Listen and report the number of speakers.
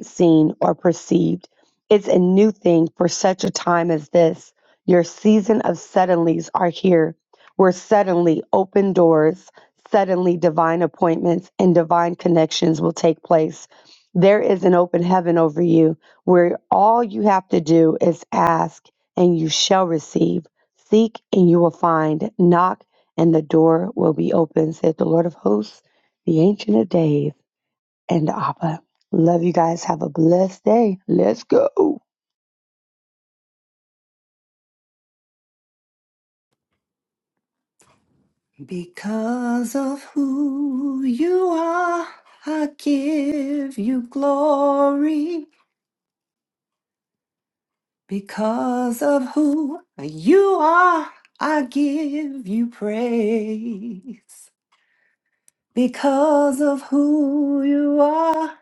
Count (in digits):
2